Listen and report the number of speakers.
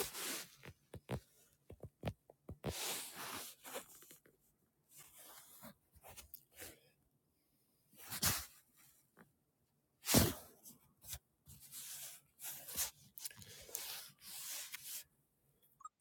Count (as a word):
zero